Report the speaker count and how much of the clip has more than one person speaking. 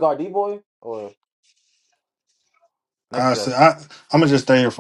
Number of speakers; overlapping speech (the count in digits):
2, about 8%